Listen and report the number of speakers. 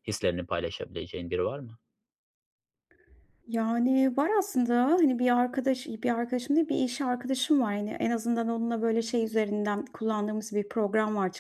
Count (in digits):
2